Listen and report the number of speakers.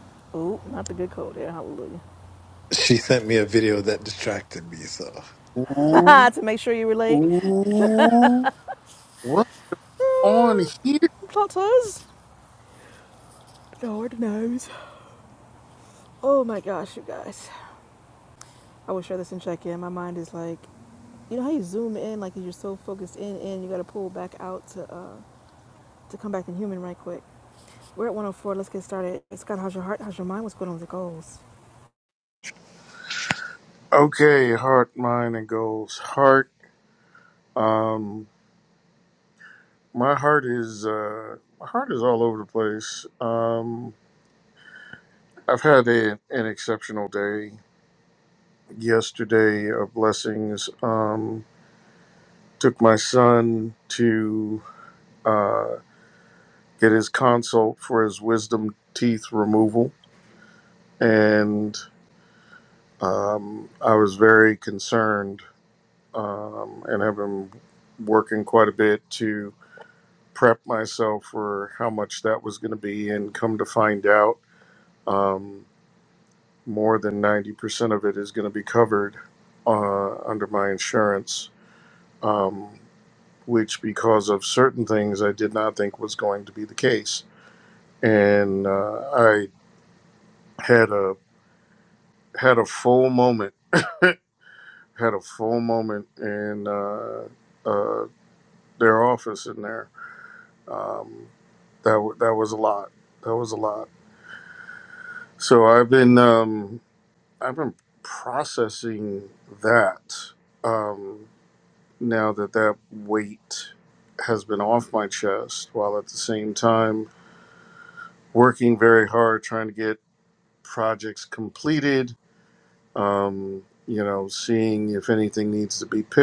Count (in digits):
3